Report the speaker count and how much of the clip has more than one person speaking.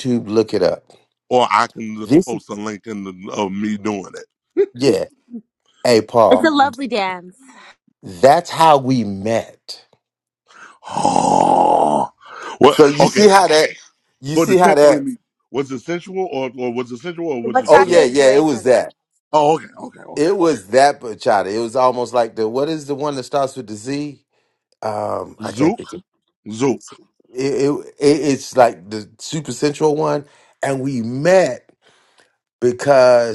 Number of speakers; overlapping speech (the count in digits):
3, about 10%